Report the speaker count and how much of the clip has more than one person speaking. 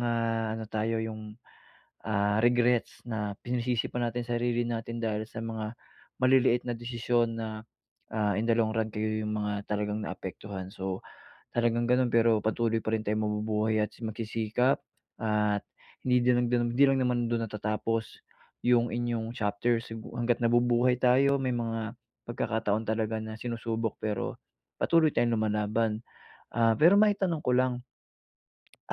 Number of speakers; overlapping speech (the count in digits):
1, no overlap